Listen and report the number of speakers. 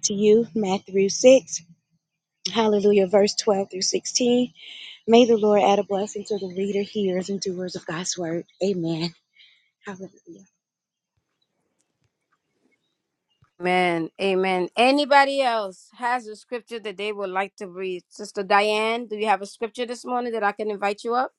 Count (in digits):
2